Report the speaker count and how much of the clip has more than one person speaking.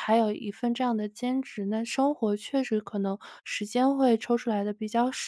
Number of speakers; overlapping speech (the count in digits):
1, no overlap